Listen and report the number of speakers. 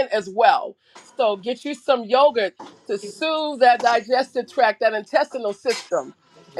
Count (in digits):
1